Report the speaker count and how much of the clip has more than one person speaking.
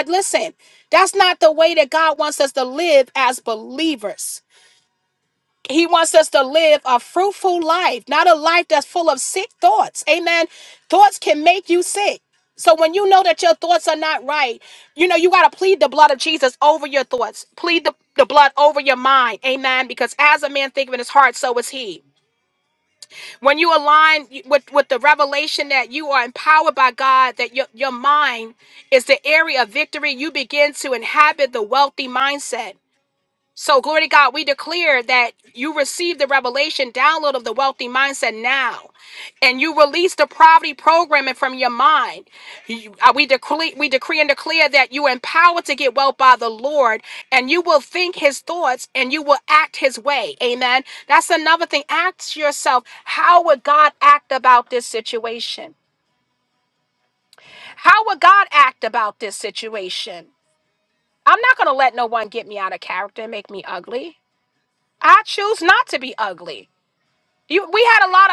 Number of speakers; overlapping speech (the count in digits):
1, no overlap